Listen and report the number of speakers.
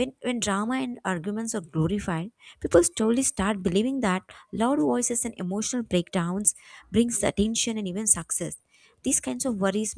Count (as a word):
one